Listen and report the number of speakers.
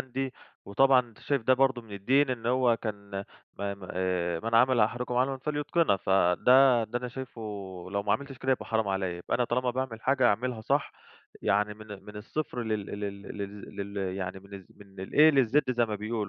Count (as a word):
one